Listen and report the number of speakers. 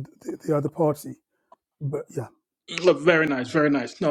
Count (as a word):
two